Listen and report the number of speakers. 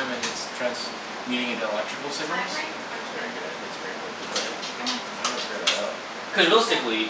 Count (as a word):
two